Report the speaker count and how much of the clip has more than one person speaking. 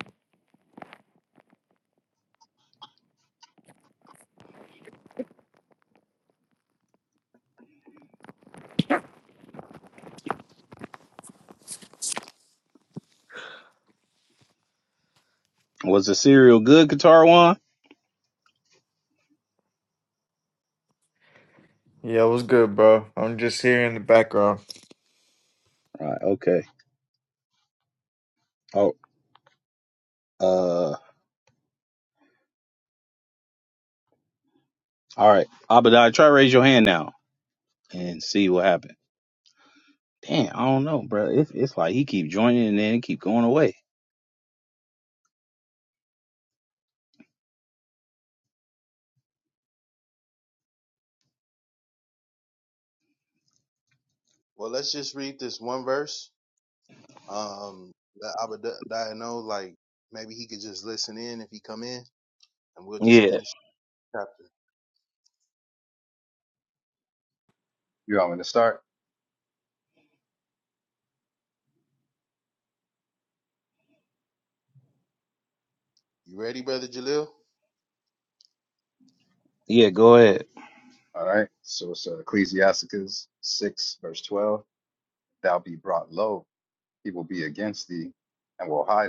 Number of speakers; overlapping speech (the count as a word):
four, under 1%